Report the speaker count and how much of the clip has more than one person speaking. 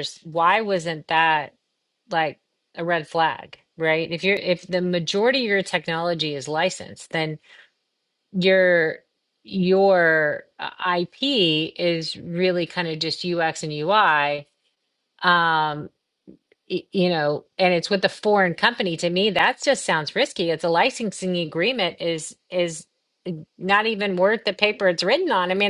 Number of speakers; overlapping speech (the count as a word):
one, no overlap